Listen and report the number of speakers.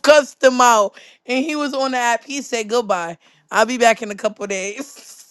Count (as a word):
one